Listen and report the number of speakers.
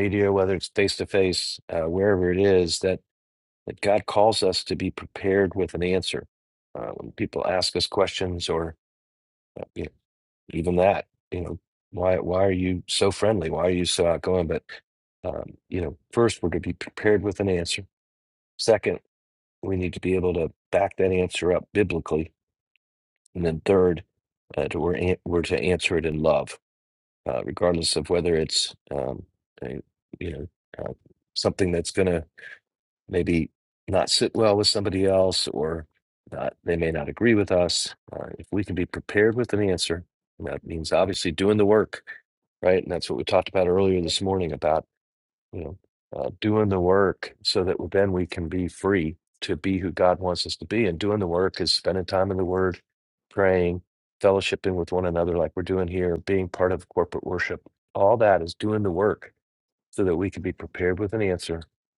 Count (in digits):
1